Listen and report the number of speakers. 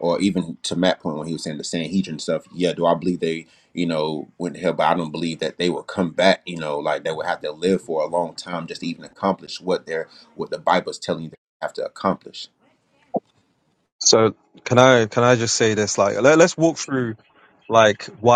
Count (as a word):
two